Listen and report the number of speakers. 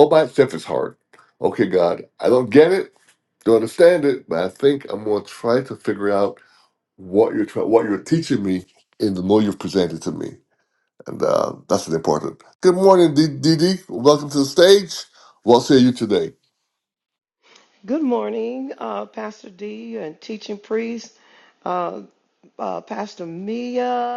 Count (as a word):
two